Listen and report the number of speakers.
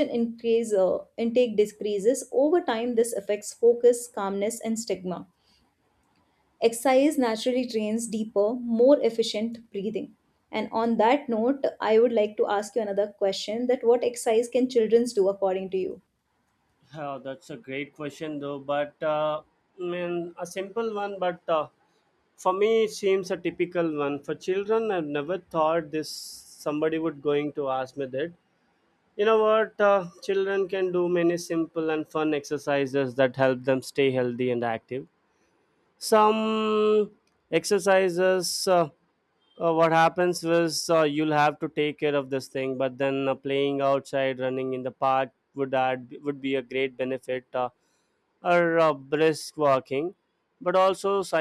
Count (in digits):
2